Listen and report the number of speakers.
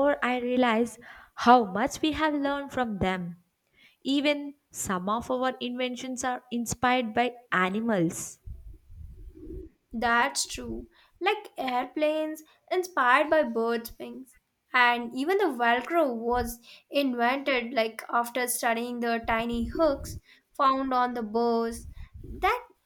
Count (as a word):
two